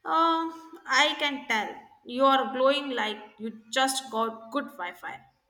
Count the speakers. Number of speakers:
one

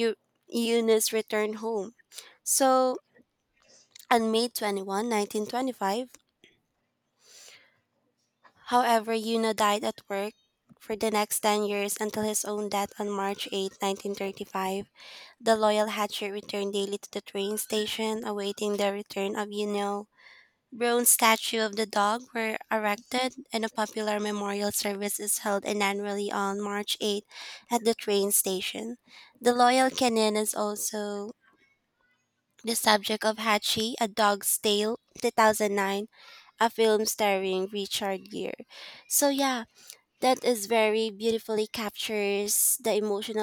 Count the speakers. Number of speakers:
one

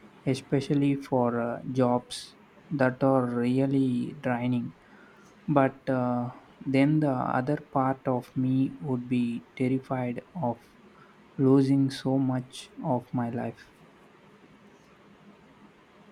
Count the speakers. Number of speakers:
one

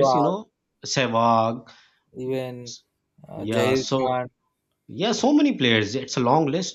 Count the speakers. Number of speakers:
two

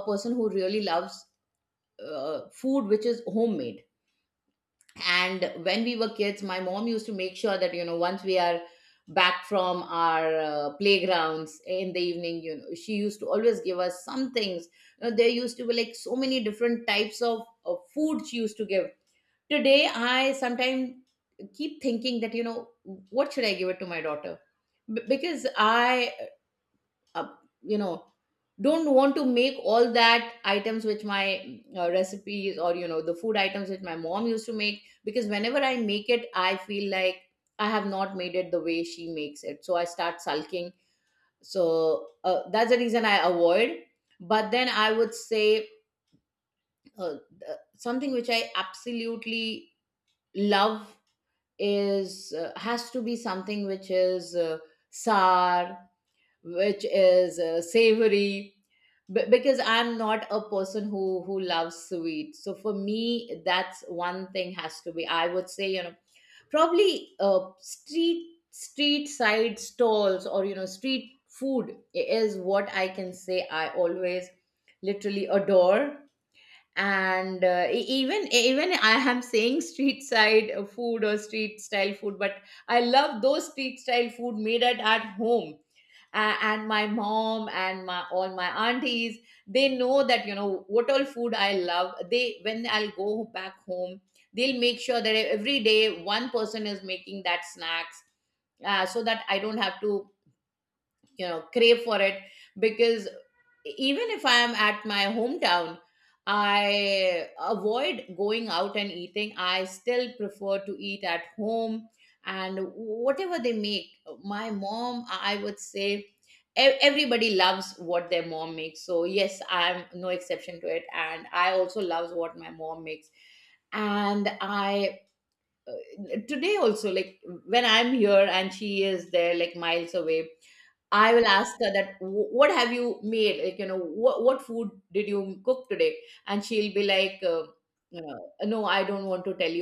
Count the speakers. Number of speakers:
one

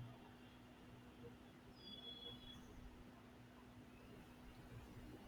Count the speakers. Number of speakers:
zero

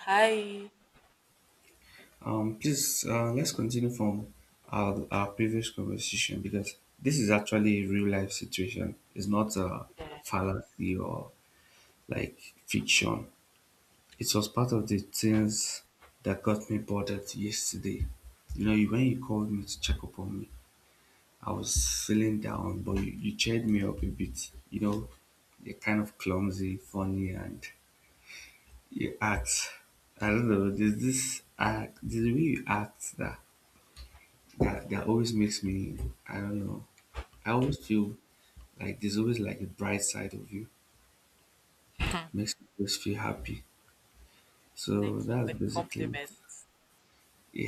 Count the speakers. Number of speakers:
two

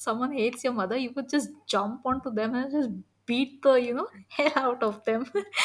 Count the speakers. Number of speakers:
one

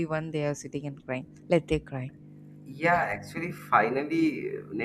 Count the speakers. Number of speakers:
two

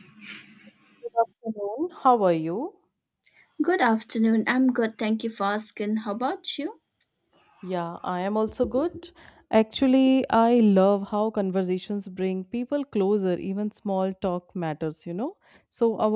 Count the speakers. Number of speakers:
two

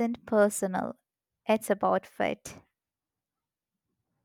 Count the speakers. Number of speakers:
one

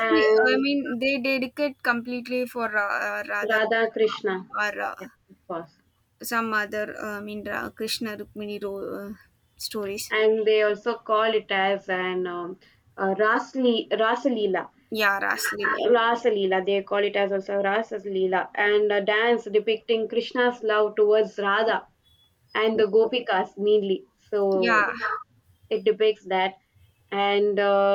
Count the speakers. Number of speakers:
two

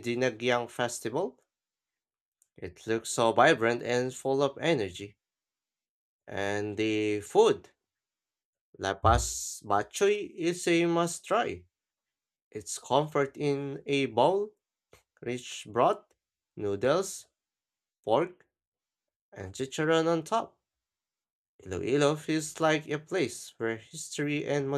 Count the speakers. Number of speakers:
one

